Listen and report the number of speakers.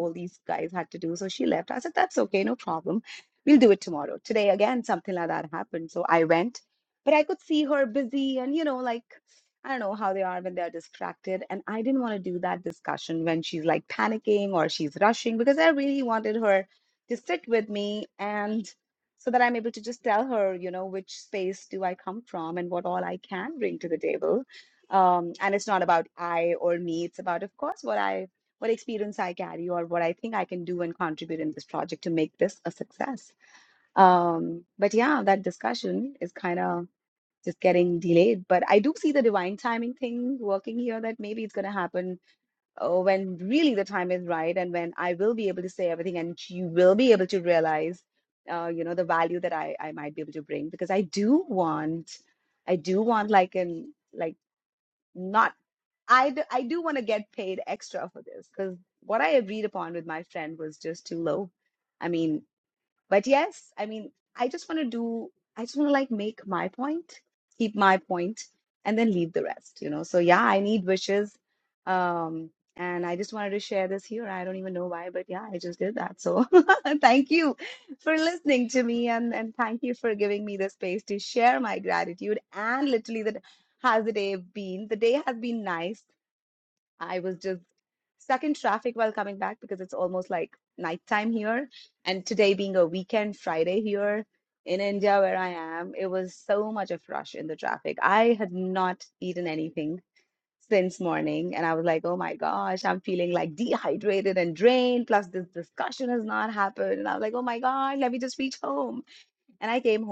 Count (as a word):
one